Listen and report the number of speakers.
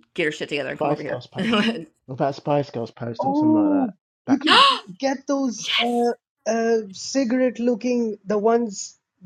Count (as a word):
three